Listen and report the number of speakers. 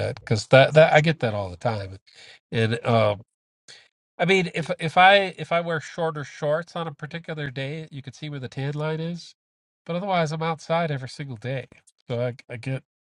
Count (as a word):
one